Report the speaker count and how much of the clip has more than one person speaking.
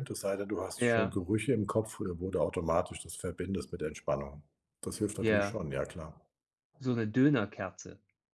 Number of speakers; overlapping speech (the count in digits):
2, about 8%